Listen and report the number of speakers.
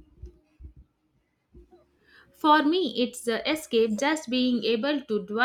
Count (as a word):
one